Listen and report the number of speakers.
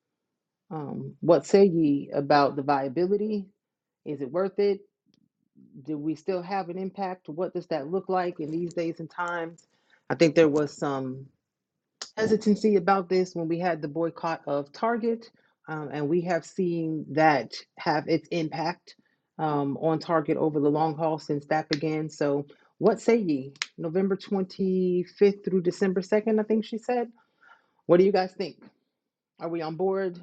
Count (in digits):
1